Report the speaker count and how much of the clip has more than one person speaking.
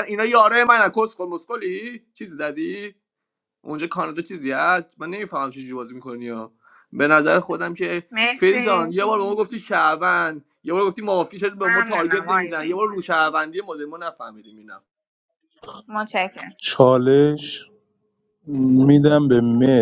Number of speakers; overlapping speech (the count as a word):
three, about 8%